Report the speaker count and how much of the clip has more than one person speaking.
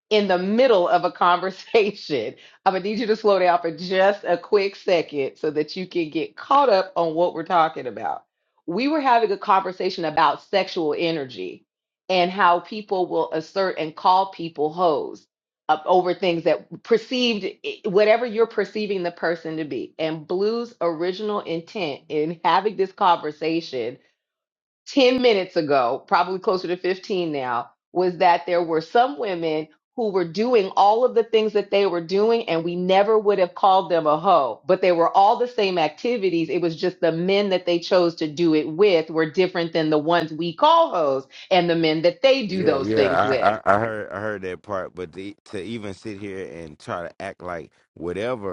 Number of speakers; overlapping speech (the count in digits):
2, about 2%